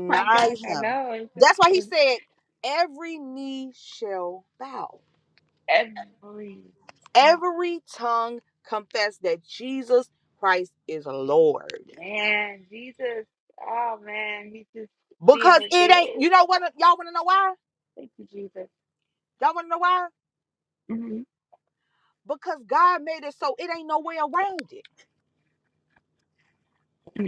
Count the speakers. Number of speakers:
2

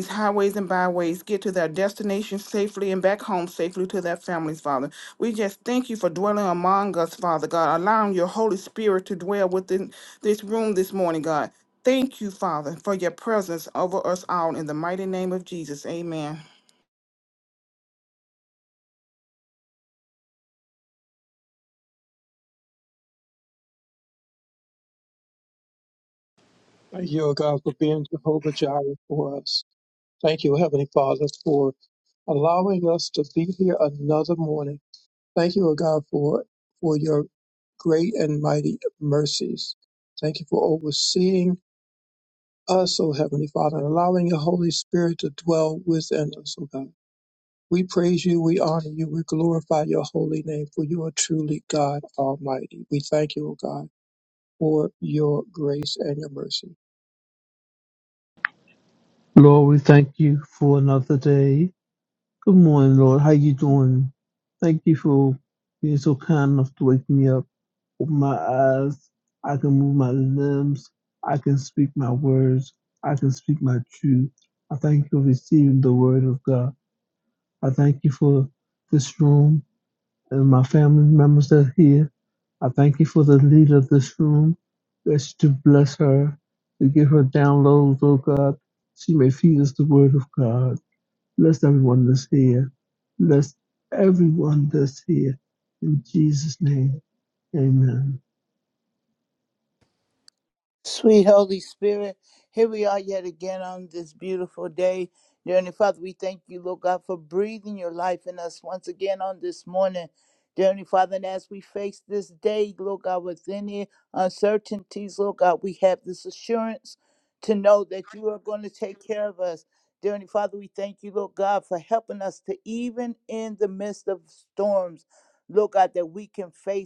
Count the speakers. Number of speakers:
4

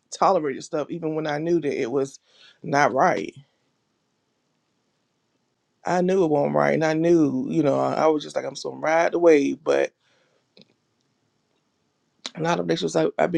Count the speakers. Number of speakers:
1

